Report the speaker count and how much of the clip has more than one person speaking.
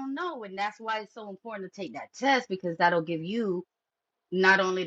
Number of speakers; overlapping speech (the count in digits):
1, no overlap